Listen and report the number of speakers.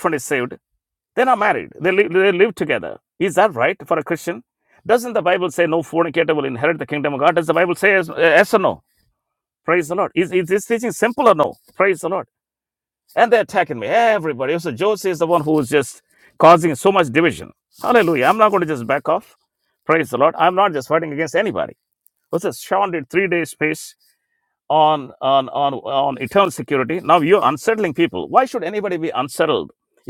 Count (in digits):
1